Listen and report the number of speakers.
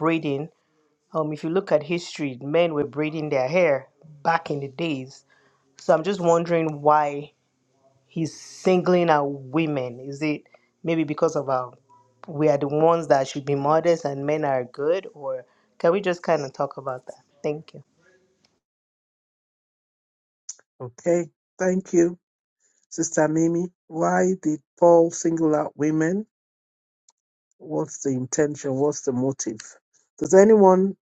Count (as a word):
two